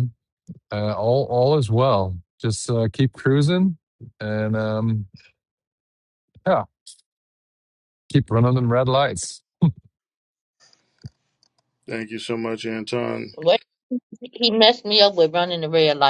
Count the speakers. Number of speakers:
three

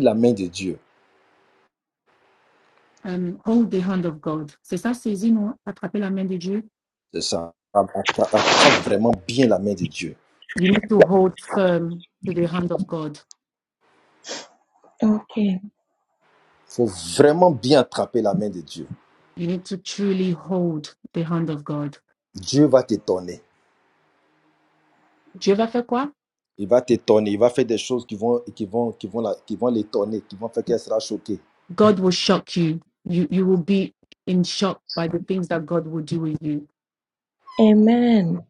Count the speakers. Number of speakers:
three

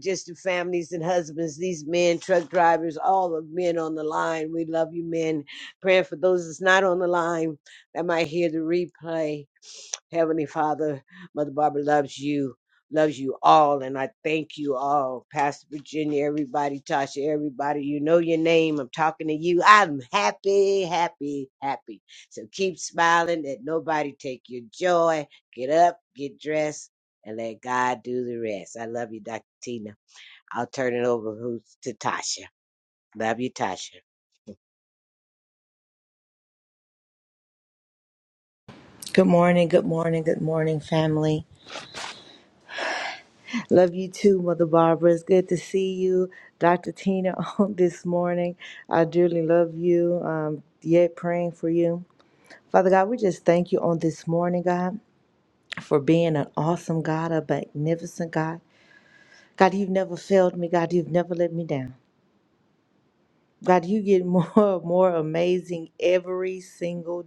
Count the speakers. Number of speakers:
two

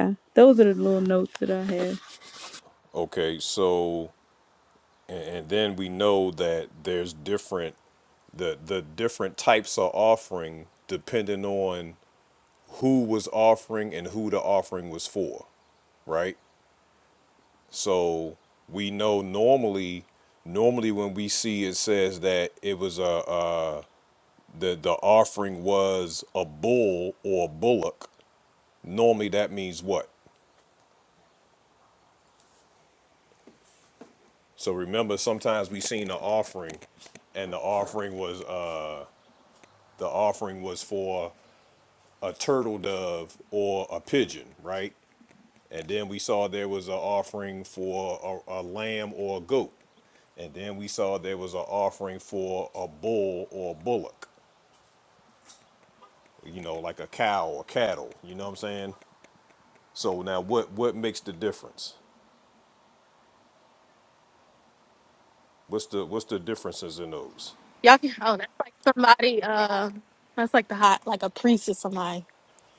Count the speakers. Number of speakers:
three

